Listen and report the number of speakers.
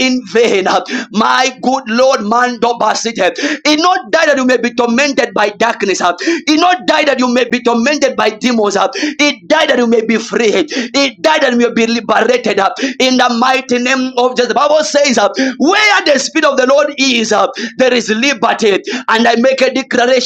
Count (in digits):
1